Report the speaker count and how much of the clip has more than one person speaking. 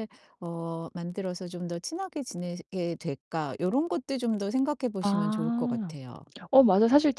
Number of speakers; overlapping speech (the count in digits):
2, about 12%